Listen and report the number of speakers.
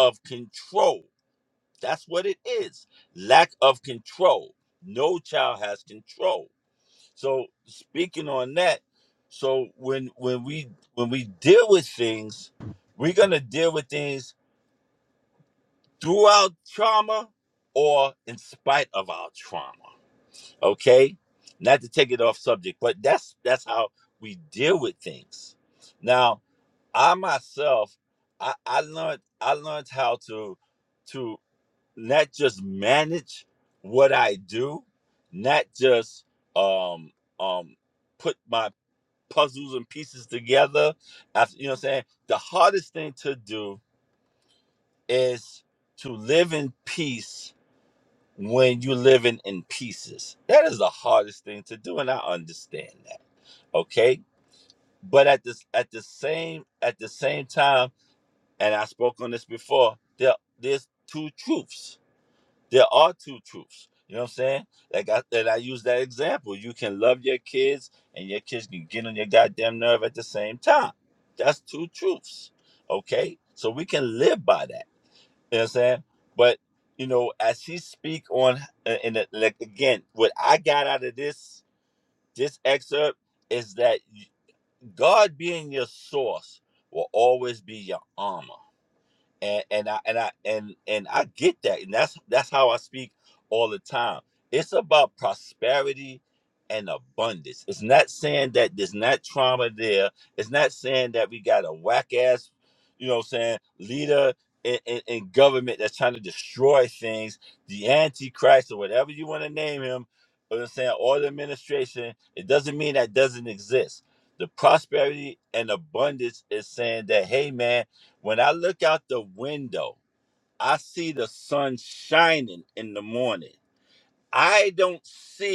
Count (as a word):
one